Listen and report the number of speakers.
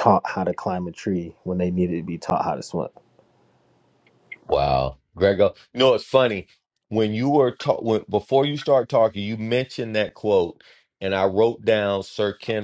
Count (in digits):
2